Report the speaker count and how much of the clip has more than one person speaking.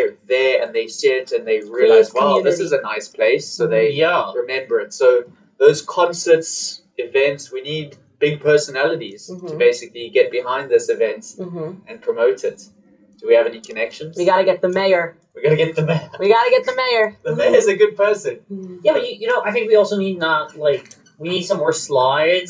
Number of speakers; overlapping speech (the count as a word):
three, about 9%